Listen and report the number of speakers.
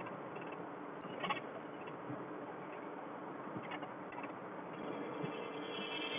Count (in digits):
0